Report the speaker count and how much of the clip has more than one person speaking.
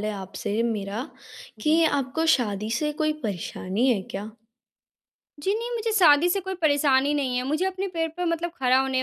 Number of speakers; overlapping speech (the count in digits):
2, about 2%